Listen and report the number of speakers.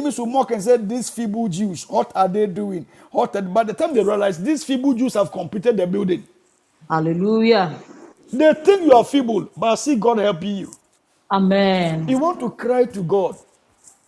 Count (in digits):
2